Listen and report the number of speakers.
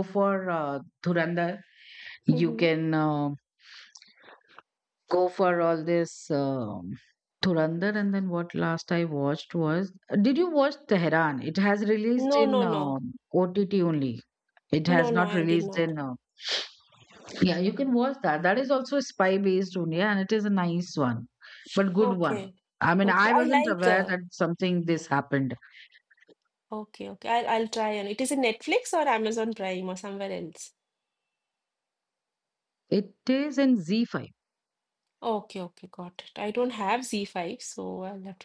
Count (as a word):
two